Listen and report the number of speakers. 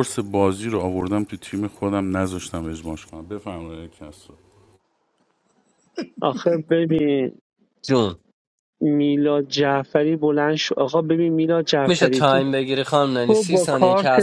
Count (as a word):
three